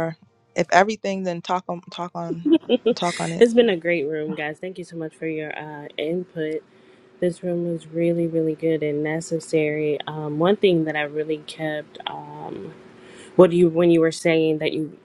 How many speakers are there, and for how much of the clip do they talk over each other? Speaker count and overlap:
two, about 1%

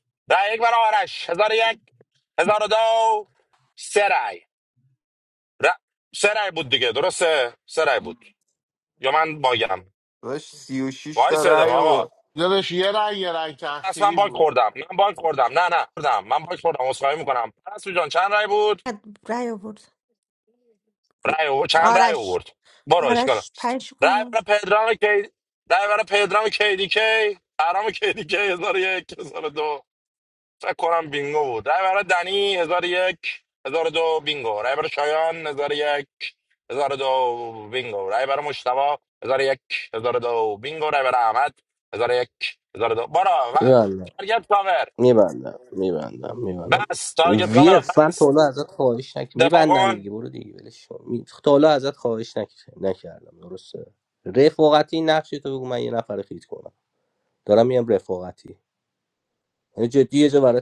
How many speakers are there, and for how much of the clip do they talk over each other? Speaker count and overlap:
five, about 8%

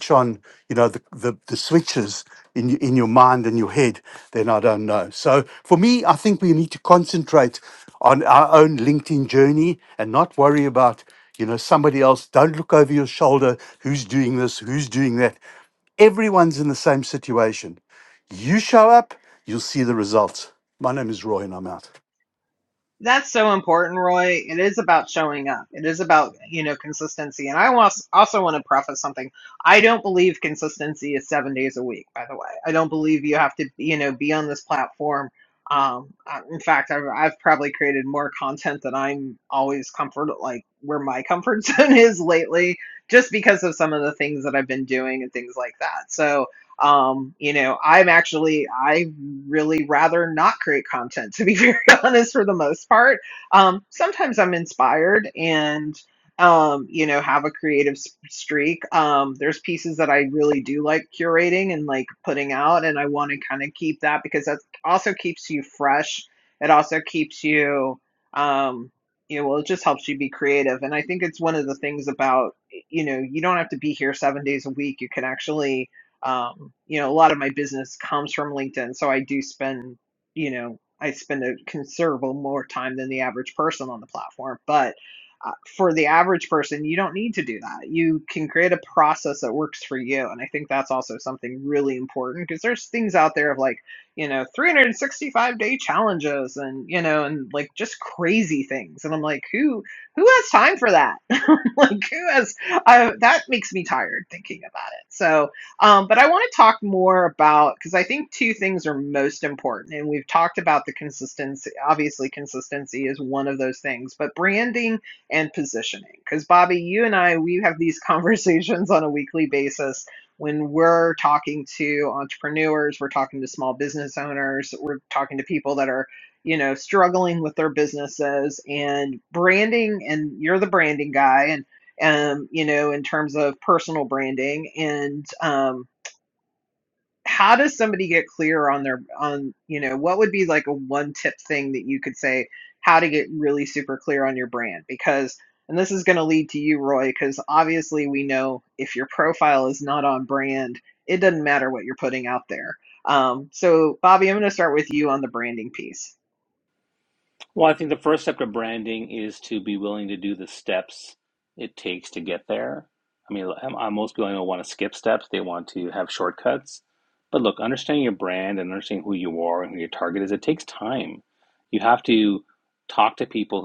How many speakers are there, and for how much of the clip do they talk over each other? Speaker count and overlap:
three, no overlap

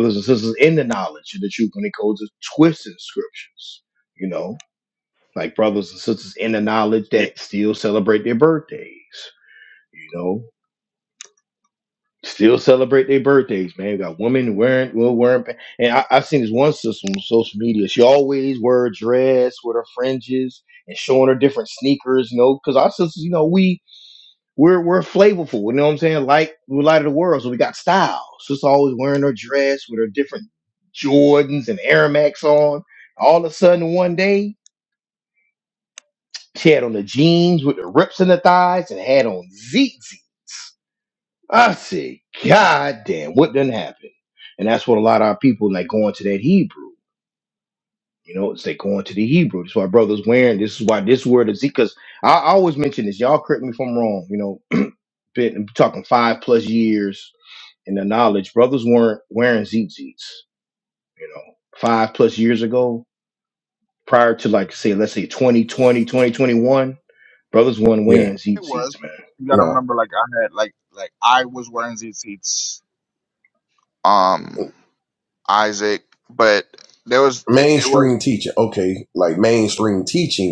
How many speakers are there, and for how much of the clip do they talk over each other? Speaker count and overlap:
three, about 2%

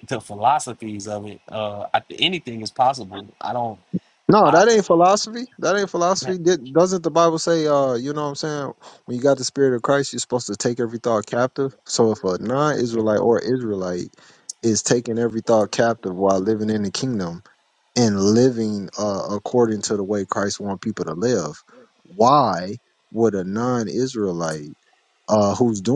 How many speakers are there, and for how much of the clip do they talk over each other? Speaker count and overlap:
two, about 1%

